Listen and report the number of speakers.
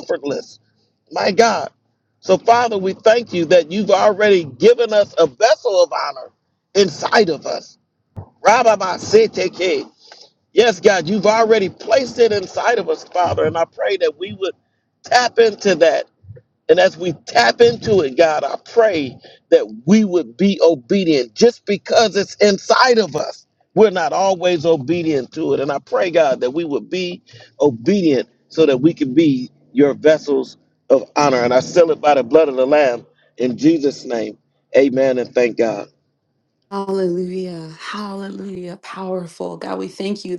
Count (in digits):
2